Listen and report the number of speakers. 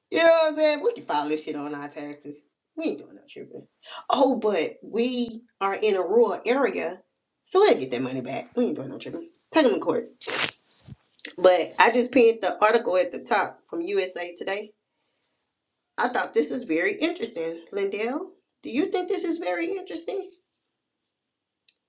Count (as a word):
one